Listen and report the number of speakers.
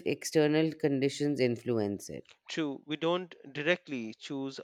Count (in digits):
2